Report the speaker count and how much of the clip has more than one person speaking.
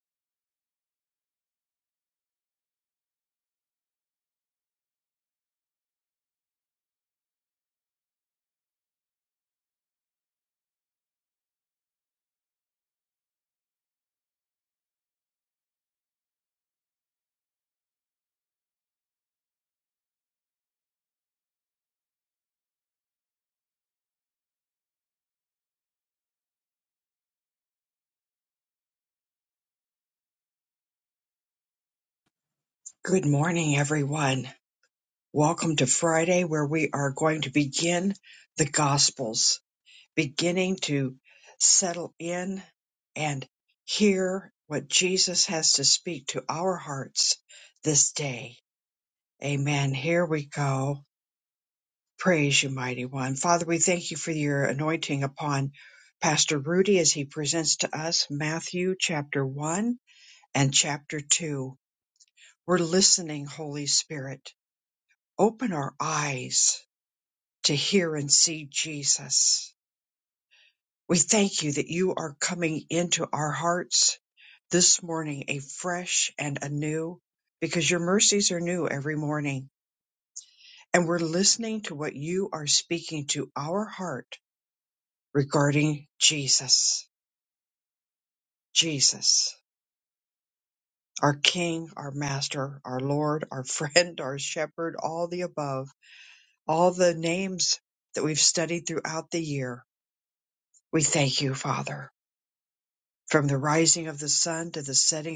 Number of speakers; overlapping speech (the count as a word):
one, no overlap